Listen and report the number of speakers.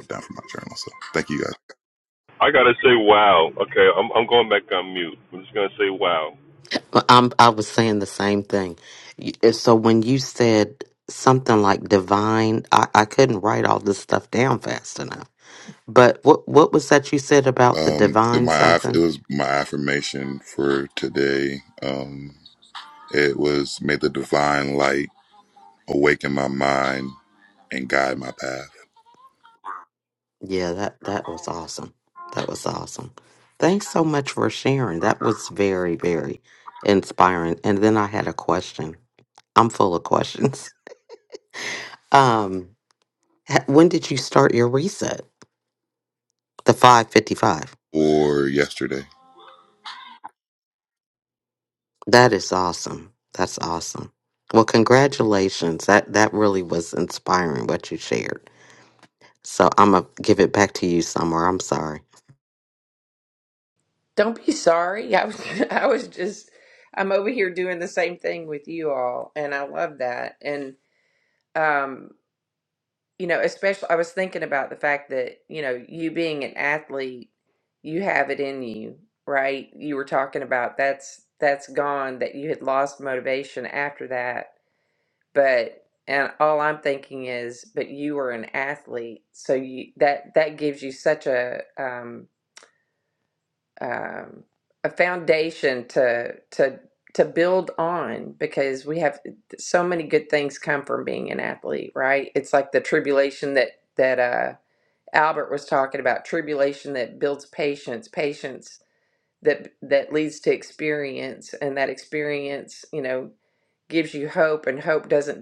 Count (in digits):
4